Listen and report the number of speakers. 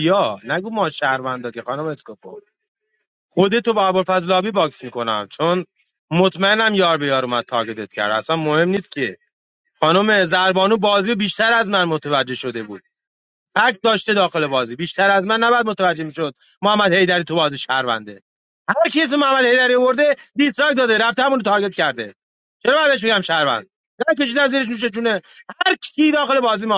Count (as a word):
one